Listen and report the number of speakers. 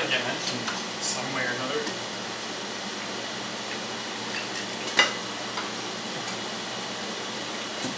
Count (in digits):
1